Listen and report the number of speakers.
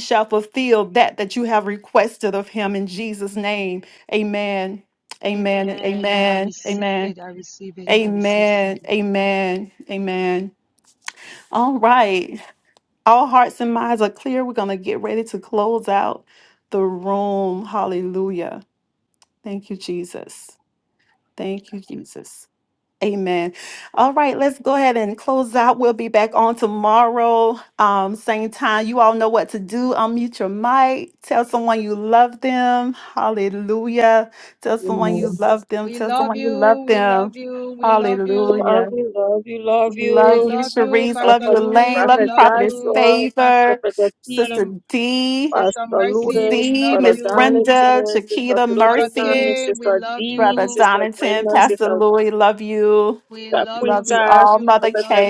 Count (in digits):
3